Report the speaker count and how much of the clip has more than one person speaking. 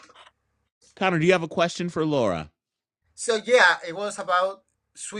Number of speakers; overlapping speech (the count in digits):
2, no overlap